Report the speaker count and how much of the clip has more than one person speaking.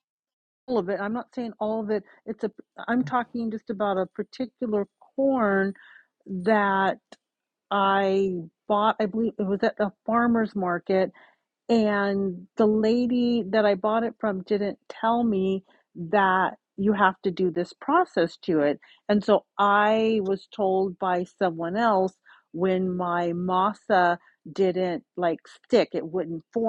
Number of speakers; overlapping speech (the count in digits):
1, no overlap